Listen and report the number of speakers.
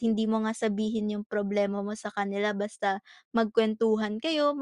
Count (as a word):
one